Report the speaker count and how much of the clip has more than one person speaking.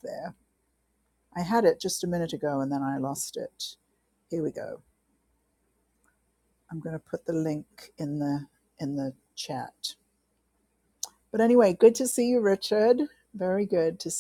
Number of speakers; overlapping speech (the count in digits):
1, no overlap